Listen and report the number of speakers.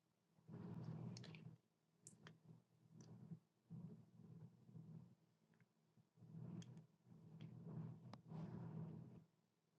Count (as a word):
zero